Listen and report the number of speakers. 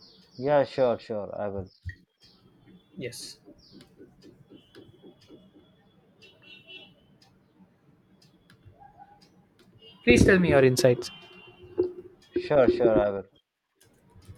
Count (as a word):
two